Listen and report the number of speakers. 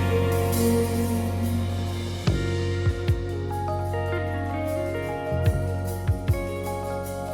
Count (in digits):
0